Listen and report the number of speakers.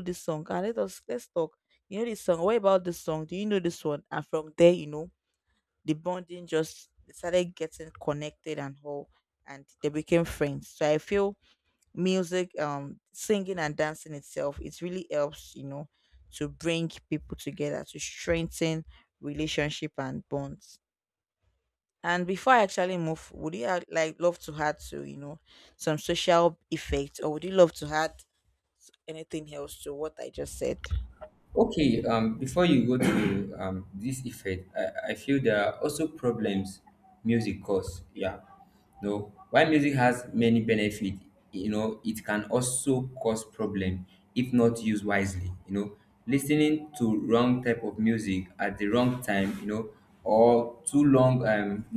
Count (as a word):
two